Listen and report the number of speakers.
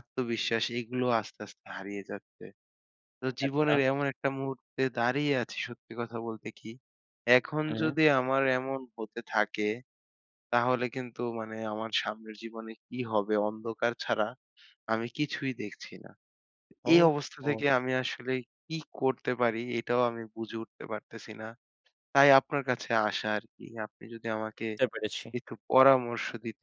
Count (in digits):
2